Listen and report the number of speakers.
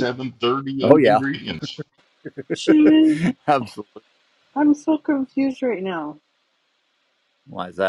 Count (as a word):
three